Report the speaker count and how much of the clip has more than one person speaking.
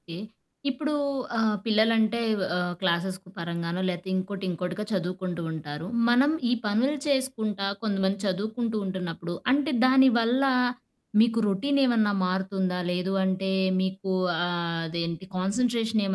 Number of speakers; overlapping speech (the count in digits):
1, no overlap